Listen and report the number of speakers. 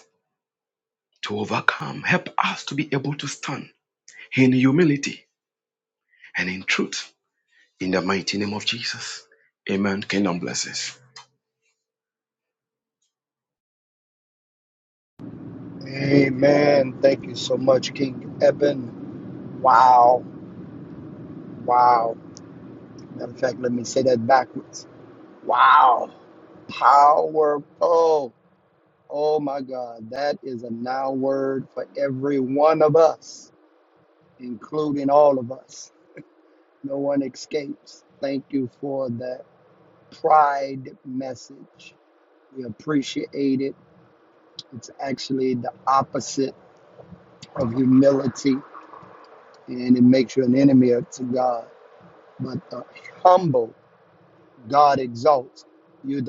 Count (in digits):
2